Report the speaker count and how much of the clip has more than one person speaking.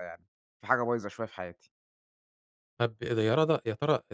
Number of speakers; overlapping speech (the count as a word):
two, no overlap